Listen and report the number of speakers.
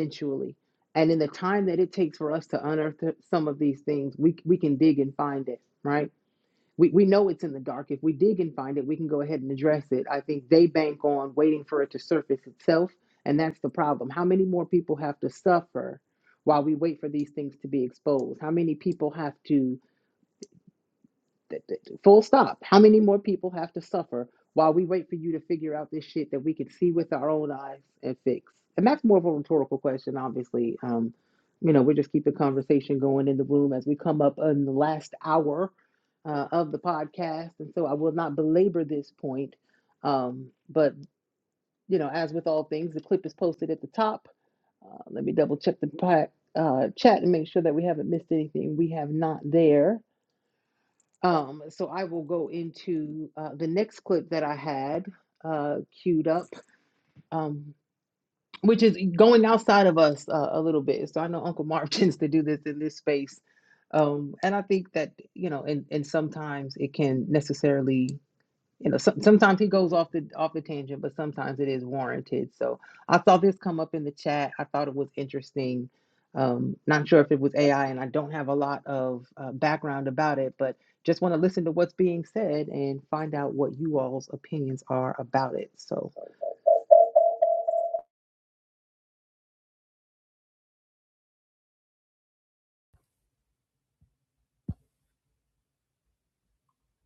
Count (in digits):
1